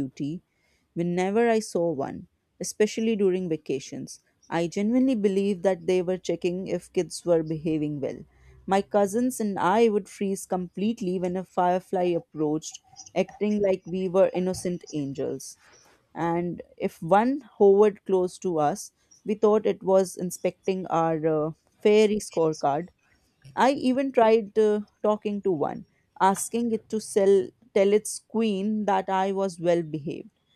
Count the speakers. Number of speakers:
1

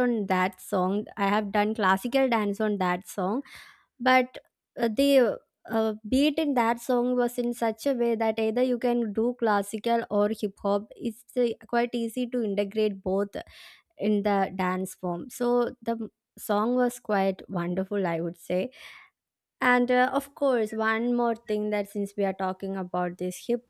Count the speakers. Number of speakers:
1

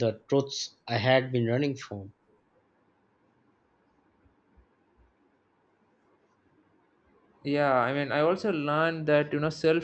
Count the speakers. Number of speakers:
2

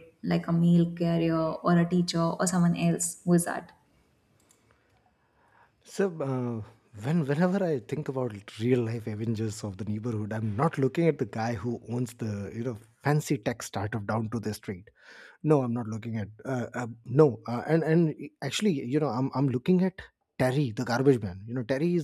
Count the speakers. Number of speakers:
2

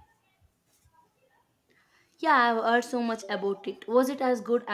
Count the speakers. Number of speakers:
1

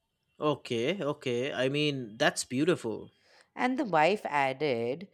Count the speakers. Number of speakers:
2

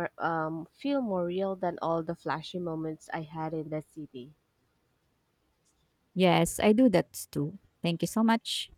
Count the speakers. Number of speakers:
2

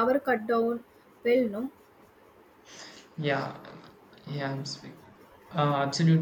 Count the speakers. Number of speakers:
2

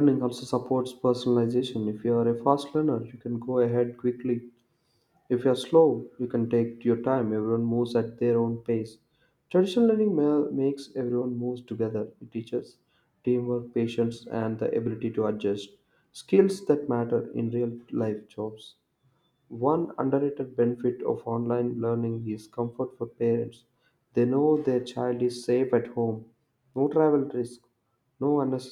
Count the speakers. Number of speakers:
1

